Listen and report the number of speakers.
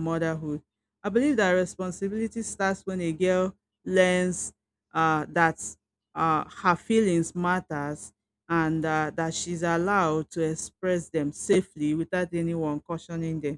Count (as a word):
one